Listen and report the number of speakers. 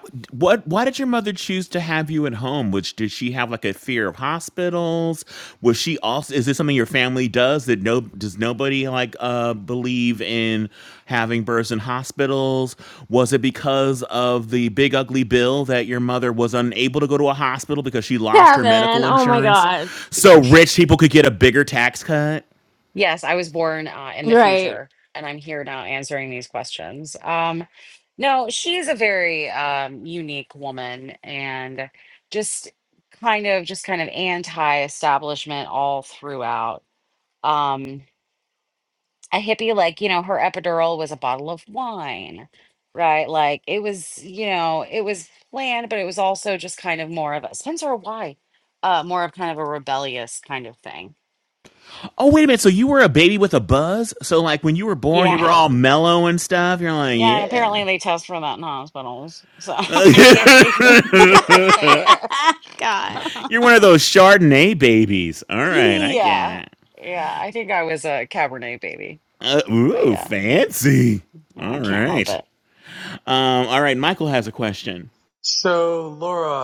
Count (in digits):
4